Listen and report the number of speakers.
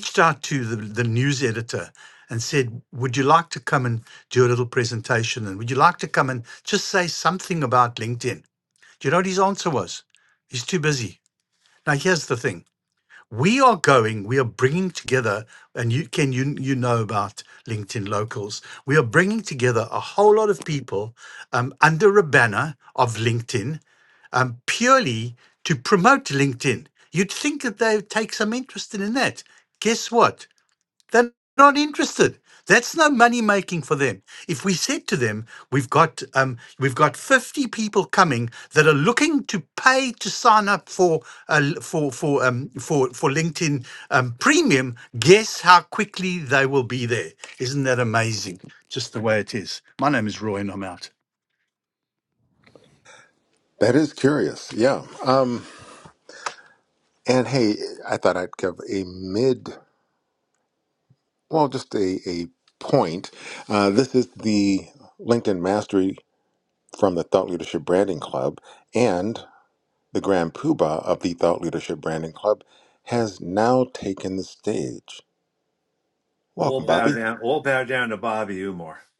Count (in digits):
3